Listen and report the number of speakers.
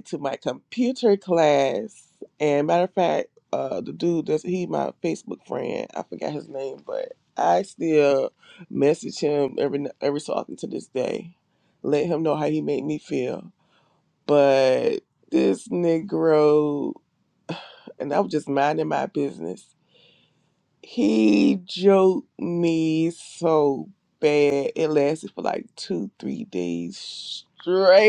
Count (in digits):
1